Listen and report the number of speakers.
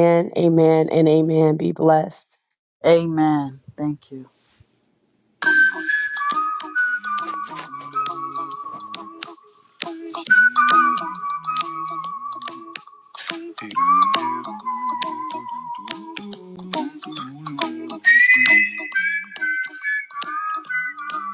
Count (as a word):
two